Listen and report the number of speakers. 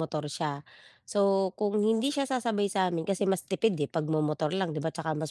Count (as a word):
one